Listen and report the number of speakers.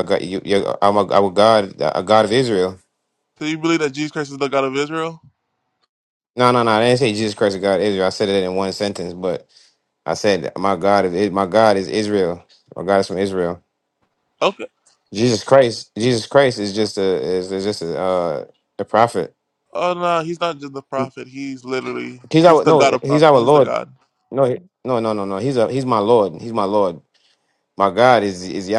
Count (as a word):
two